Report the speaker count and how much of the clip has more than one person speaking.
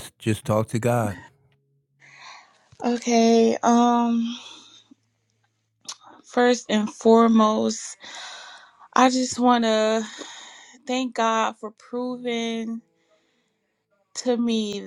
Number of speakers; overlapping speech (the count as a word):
two, no overlap